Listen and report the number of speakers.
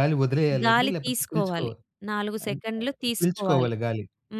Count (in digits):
2